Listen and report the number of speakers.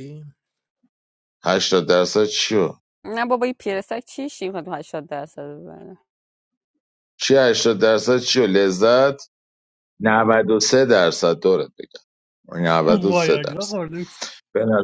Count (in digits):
3